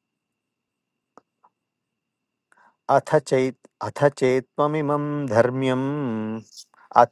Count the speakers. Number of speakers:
1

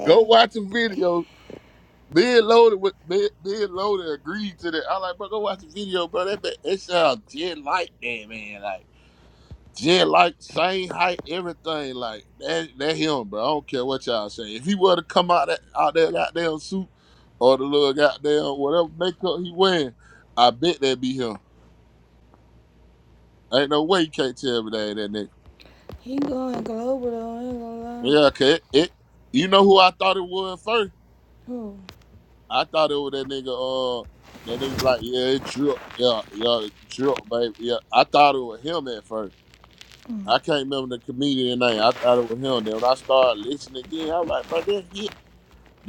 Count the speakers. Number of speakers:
2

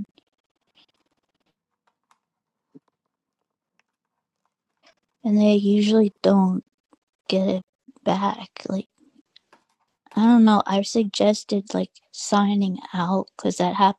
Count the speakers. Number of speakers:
1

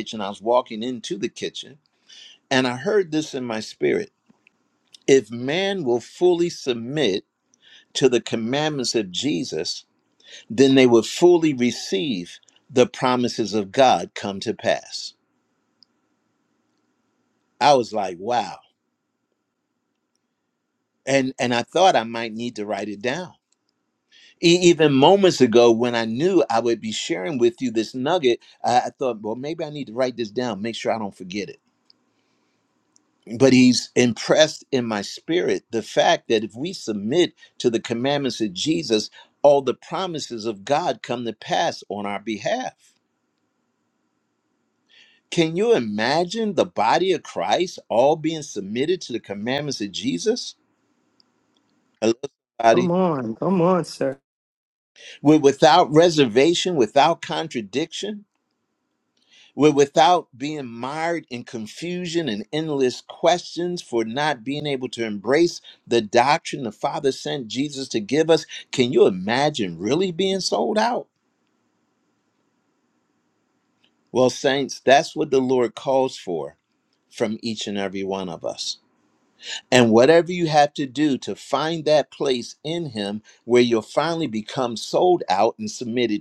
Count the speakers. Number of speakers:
2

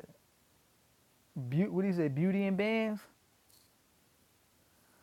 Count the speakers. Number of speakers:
1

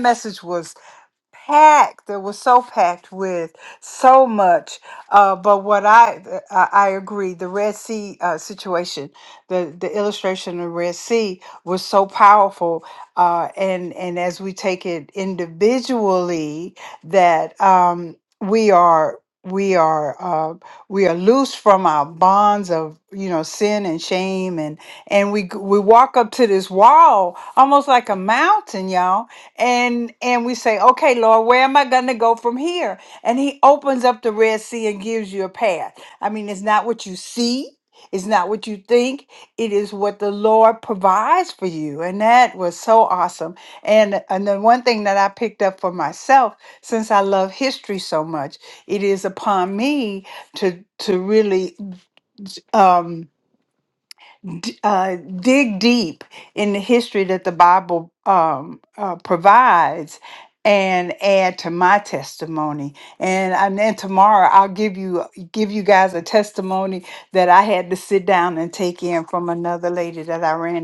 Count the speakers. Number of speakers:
1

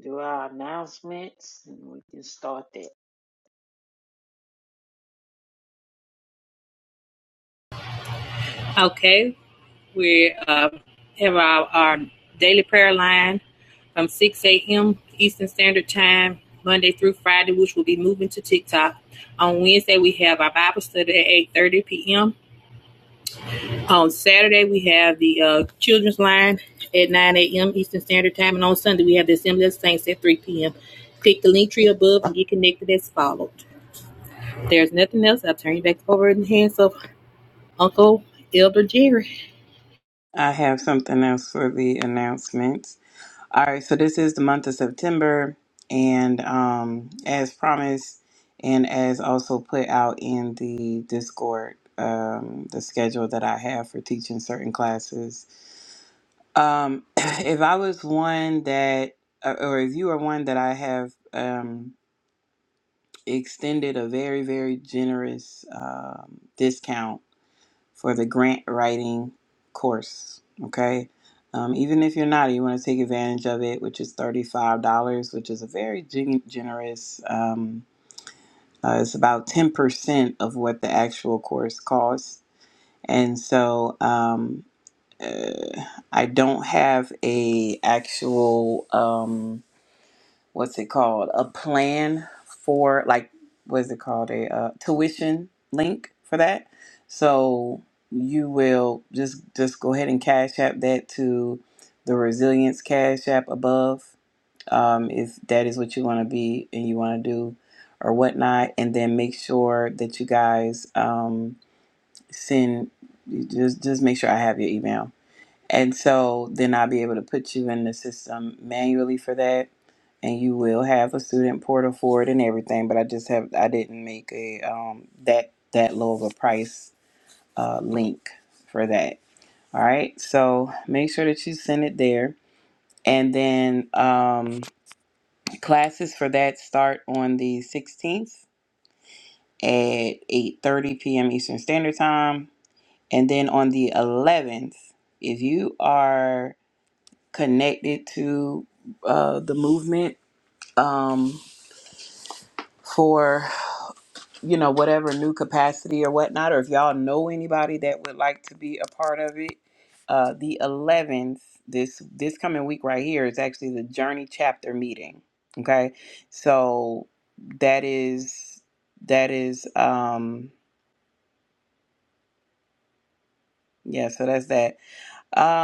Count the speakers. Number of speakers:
3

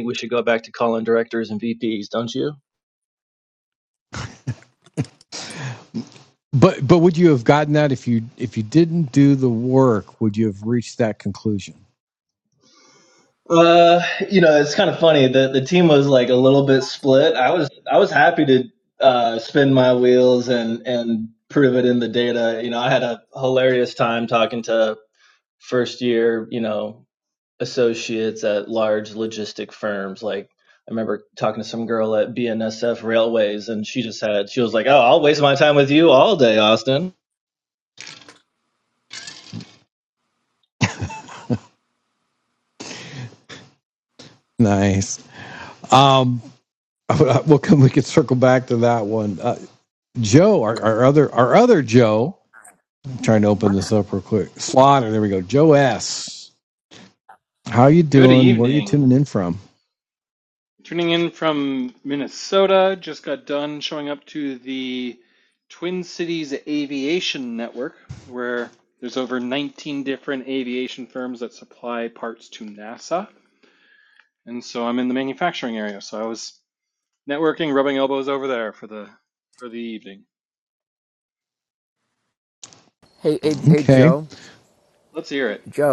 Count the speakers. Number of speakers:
4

